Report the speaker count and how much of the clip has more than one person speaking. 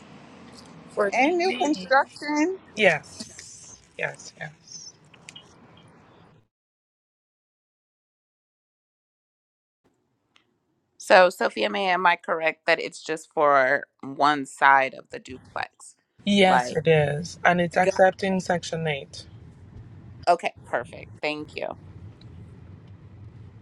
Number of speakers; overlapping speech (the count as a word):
three, about 4%